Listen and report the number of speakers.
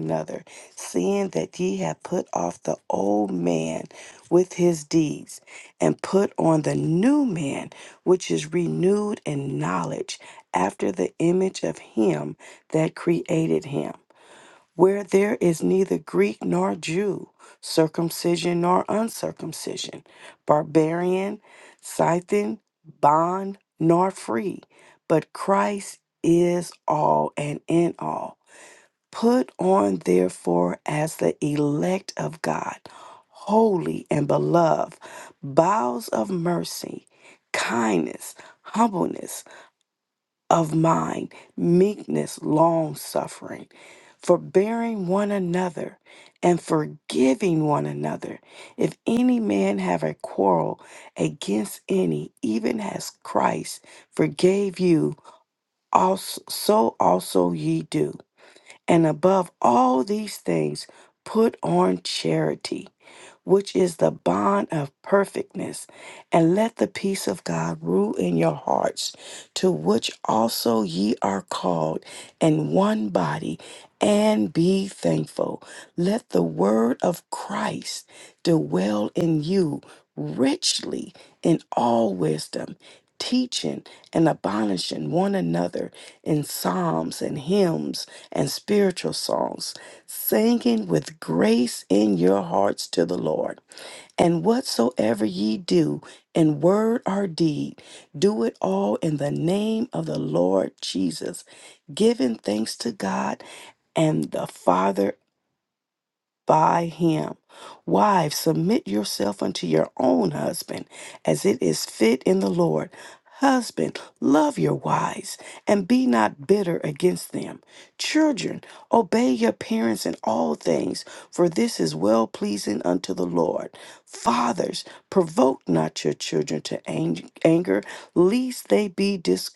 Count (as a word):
one